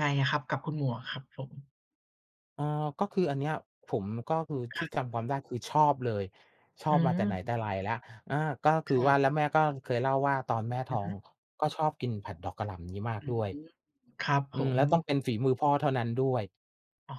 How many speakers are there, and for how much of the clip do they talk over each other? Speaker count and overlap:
two, about 7%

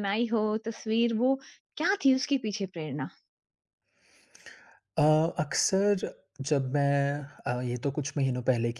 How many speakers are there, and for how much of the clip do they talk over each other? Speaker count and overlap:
two, no overlap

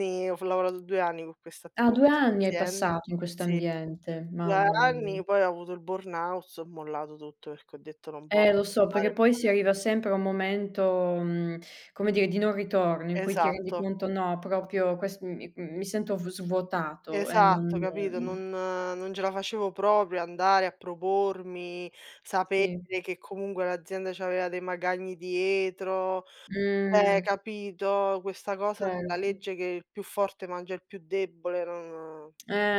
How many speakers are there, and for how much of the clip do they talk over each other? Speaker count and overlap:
two, about 18%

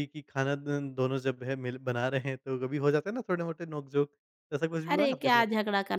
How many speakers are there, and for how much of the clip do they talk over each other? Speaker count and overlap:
two, about 10%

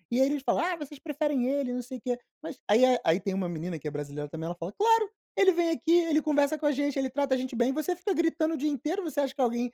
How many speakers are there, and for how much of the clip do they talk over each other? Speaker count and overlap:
one, no overlap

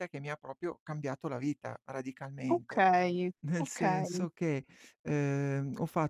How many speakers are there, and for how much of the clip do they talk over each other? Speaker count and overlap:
two, about 18%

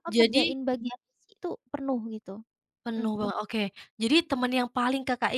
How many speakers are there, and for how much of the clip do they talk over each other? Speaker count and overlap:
two, about 7%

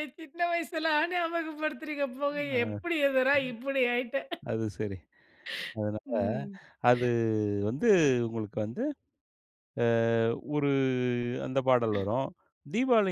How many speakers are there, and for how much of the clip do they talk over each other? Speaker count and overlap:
two, about 4%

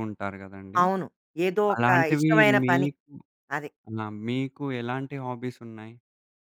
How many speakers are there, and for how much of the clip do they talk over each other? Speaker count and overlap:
two, about 20%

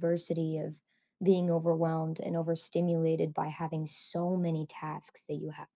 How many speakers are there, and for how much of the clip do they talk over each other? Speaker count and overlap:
one, no overlap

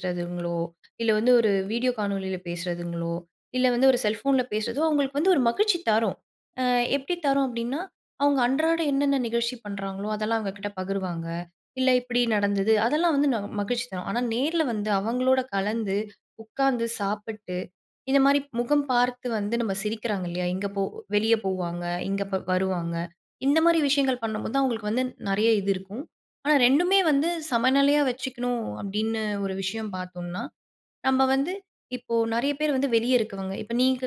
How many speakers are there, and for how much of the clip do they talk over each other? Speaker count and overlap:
one, no overlap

